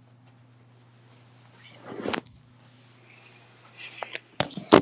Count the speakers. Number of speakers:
0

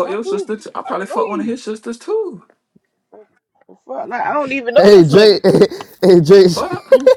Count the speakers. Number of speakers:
3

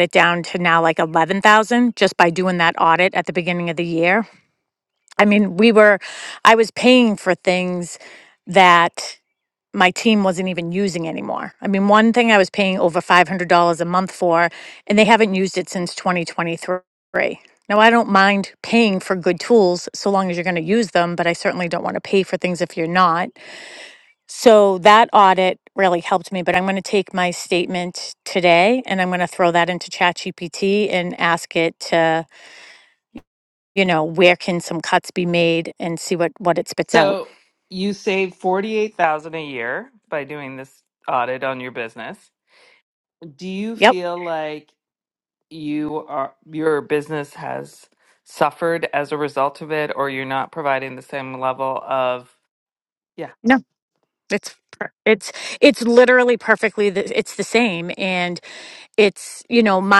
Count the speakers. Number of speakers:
2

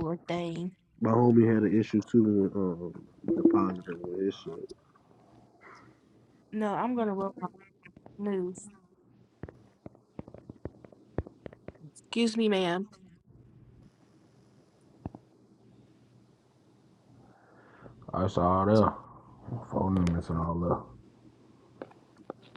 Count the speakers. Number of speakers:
3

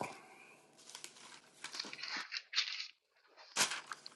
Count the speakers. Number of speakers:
0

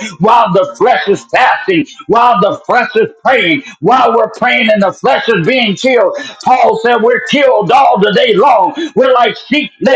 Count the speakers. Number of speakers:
1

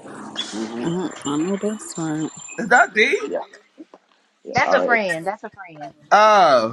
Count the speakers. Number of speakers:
4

